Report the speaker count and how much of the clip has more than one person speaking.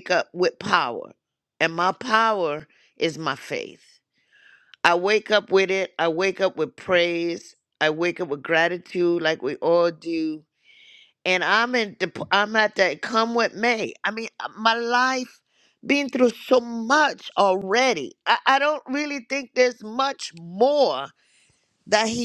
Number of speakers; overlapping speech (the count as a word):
one, no overlap